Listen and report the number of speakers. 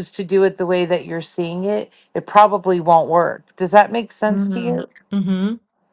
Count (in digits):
2